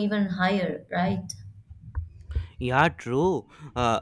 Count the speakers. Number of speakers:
2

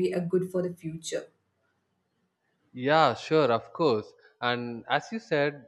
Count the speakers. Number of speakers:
2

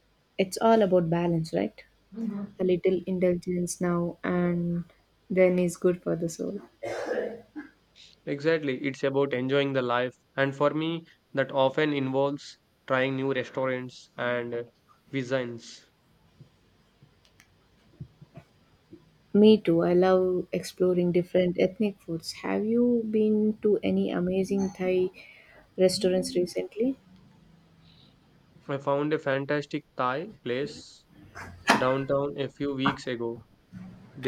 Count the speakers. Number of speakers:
2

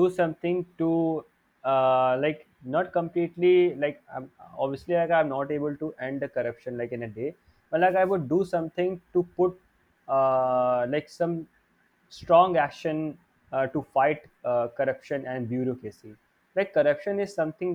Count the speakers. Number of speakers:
1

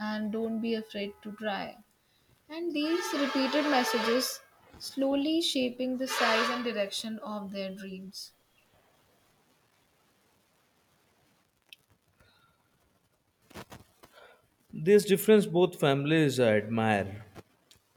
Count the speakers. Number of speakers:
2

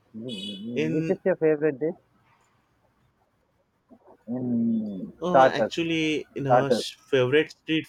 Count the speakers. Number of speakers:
2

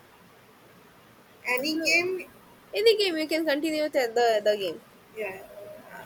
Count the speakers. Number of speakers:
2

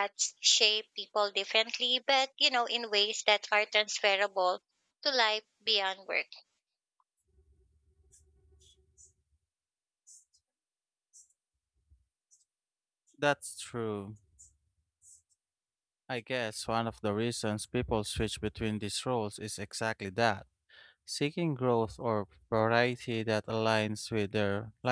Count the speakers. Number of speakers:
2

